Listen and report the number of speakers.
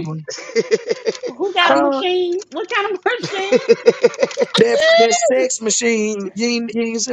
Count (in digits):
3